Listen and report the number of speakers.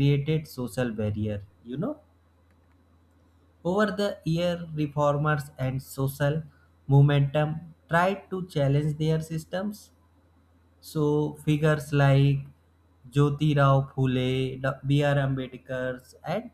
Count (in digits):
1